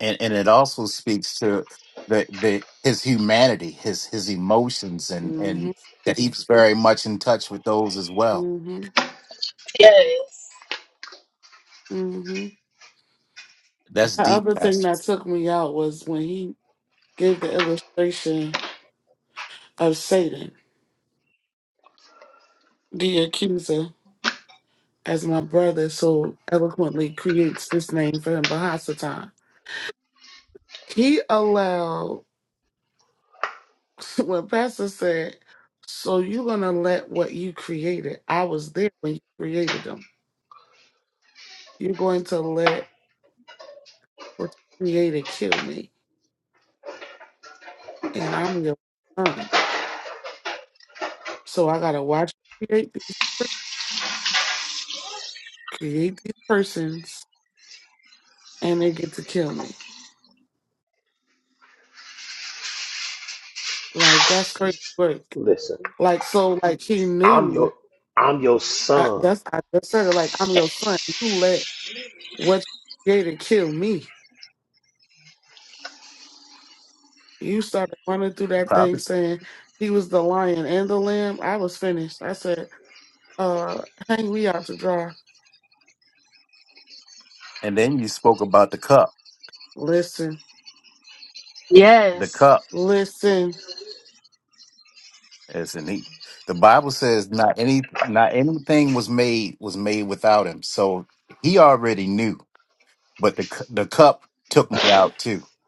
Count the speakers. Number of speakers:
four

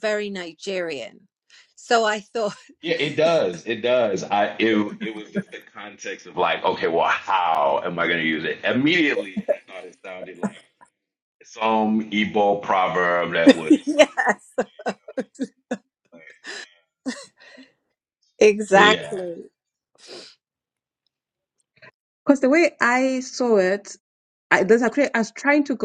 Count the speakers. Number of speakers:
three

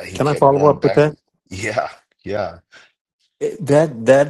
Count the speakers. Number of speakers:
two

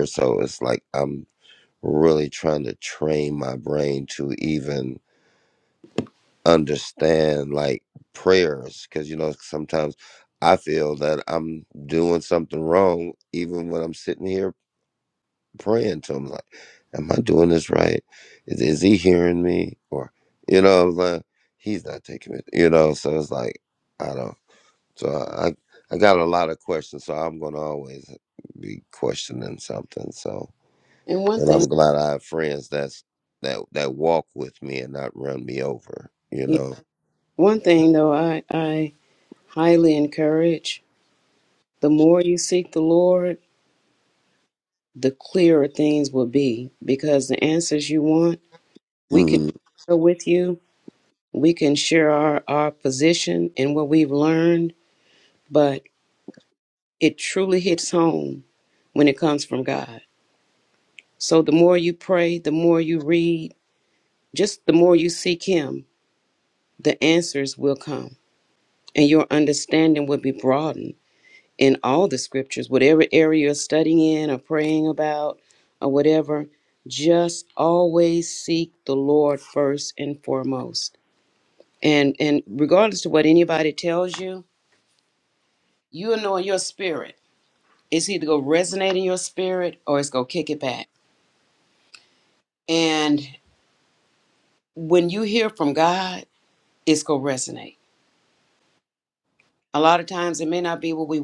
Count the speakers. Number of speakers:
two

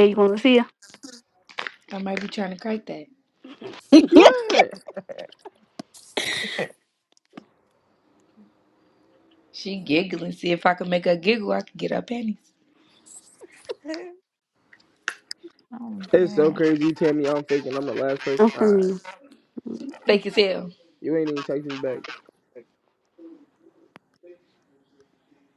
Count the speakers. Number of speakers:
three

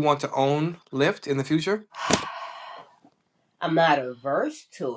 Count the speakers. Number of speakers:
two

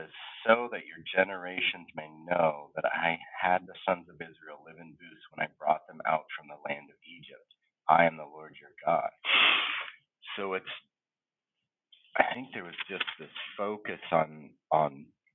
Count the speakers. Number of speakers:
one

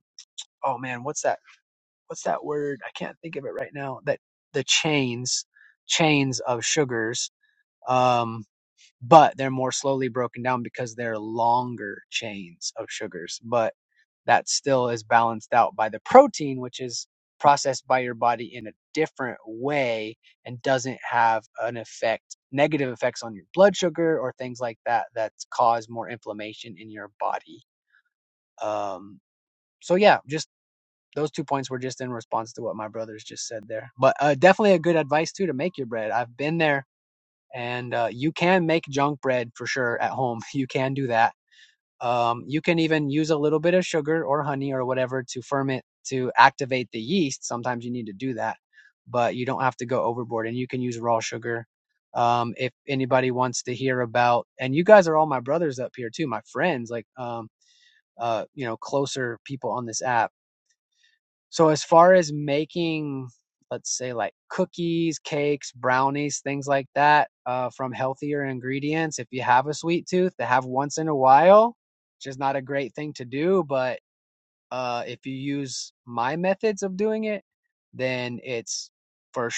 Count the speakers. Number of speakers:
one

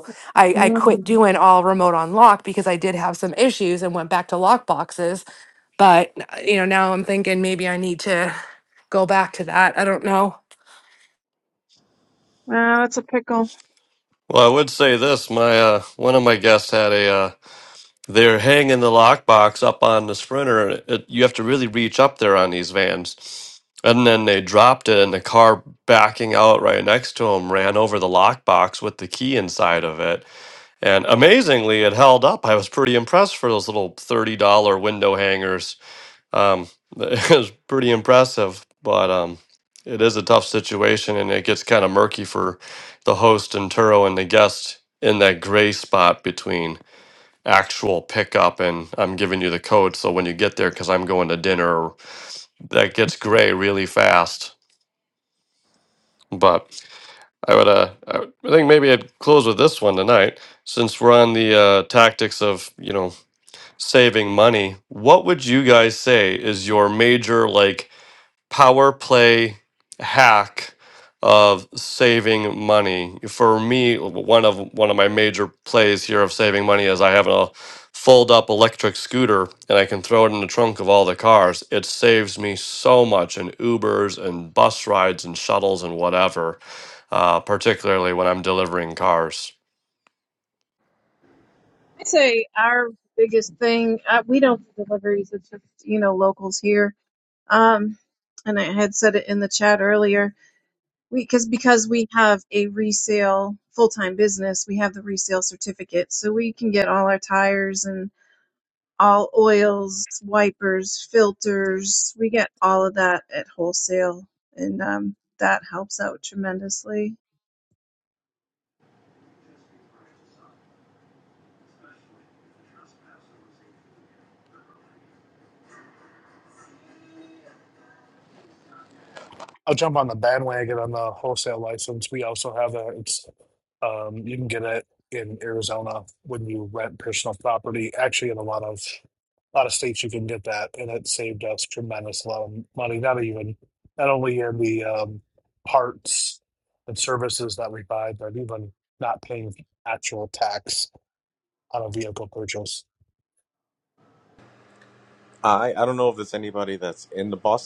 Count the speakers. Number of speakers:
five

